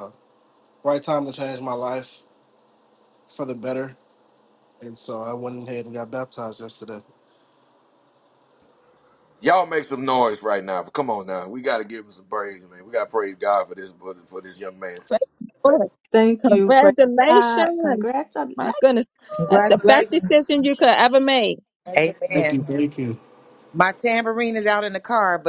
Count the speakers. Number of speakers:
five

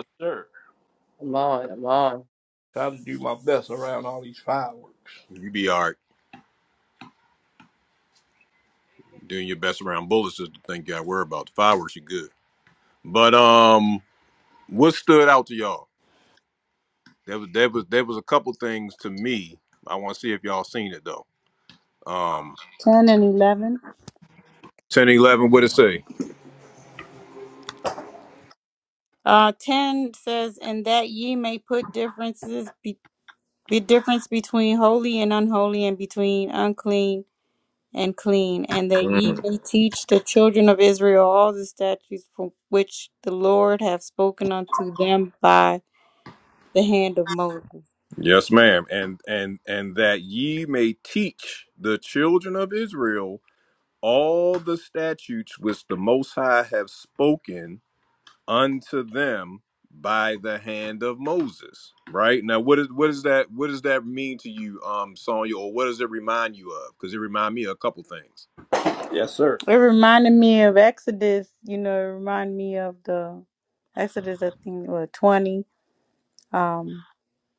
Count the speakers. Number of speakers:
four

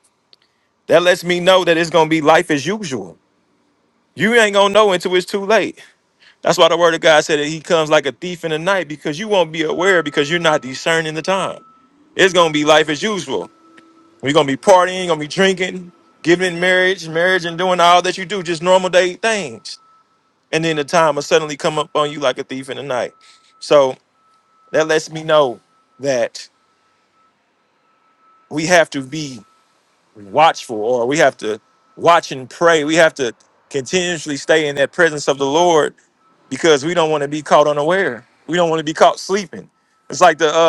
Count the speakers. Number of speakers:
one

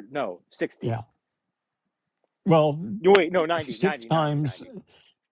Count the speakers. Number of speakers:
two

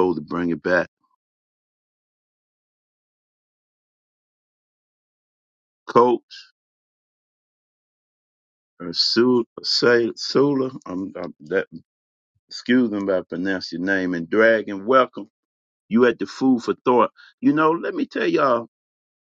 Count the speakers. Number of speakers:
one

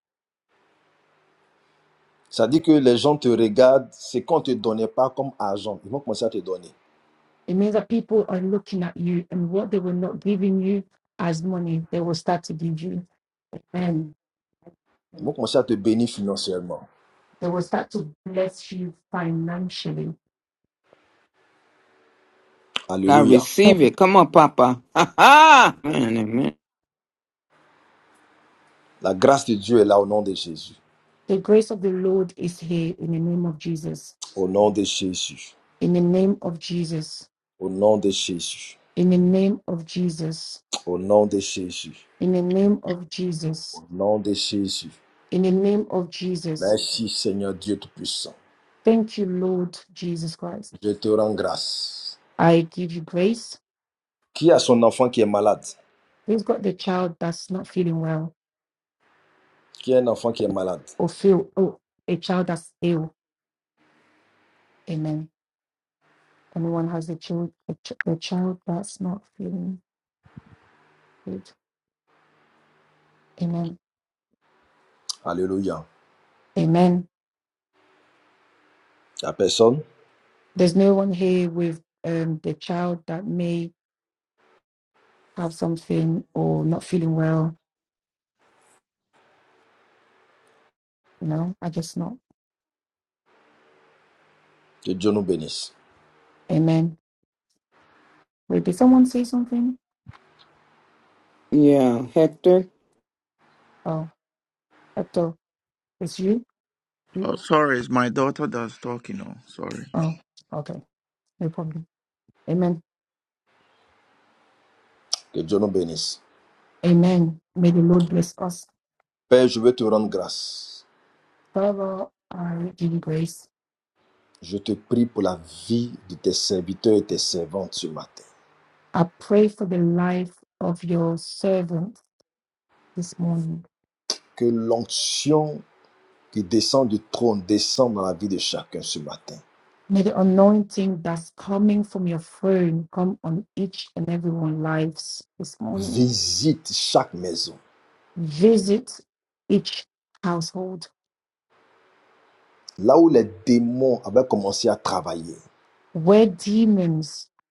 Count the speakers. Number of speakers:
four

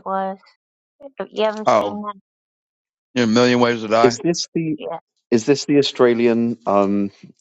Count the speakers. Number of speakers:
three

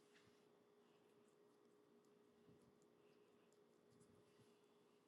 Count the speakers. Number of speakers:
zero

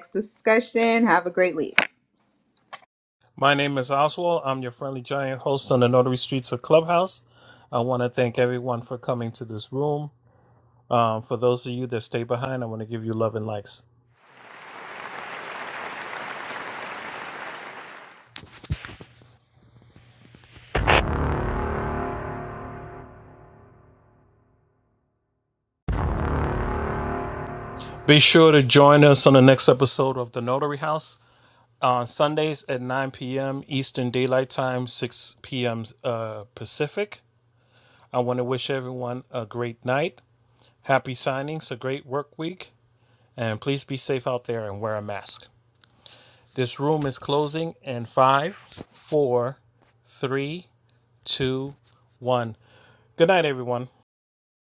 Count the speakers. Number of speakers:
two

